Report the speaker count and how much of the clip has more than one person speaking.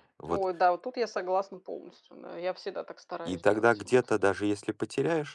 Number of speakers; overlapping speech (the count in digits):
2, about 15%